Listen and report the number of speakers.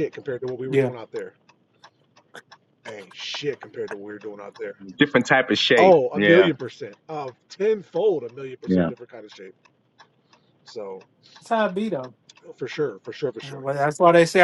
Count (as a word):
three